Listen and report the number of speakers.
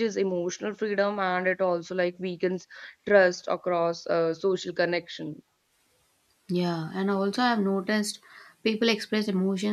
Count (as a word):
two